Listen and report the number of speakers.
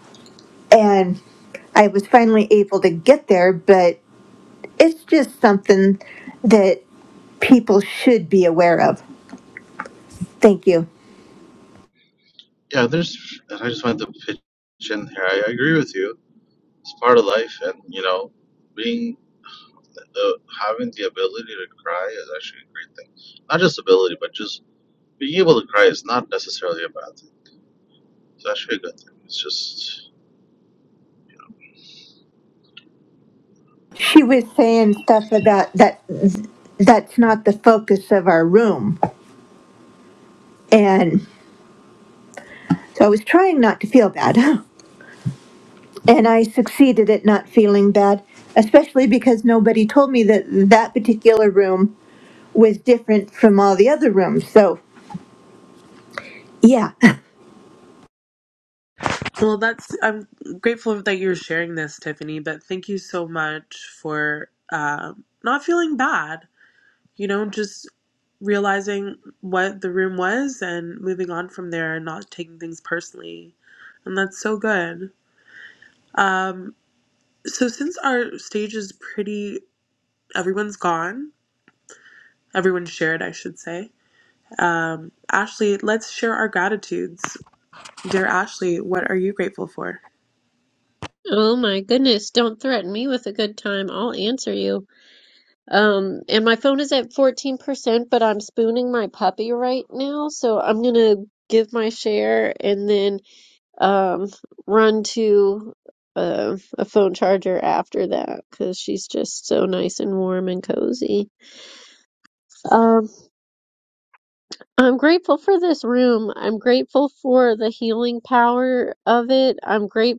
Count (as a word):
four